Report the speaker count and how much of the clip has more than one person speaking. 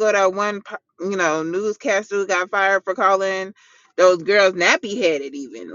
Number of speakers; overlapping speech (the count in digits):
1, no overlap